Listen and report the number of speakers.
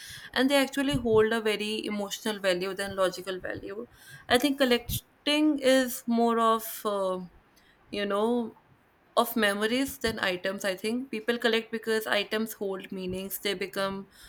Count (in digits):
1